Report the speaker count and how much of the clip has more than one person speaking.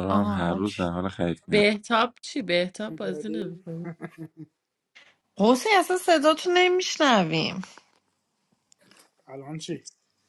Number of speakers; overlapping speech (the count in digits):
4, about 15%